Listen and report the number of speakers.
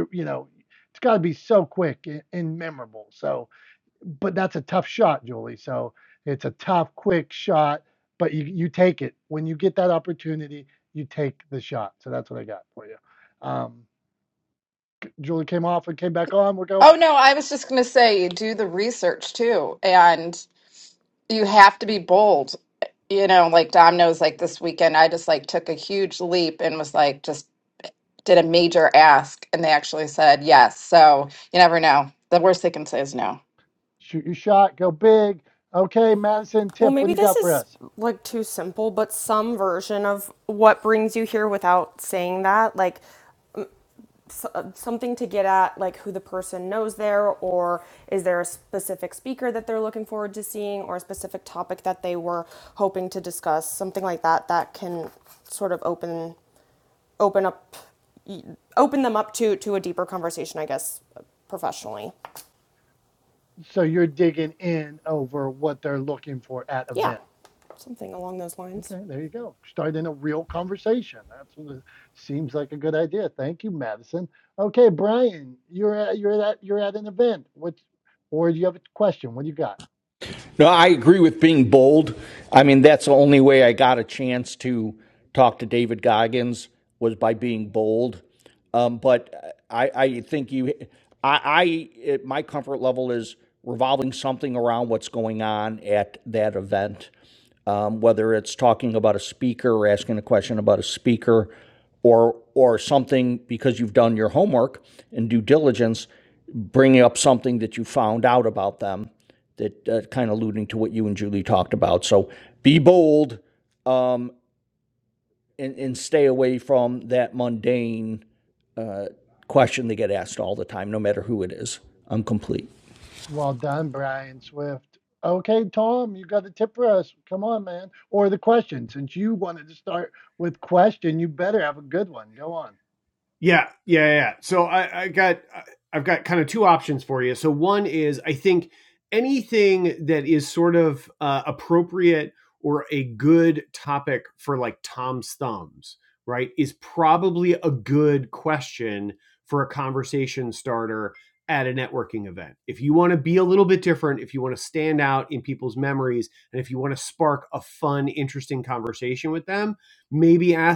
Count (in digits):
5